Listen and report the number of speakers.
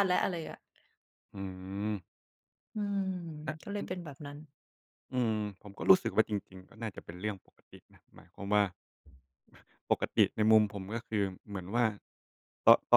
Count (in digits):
2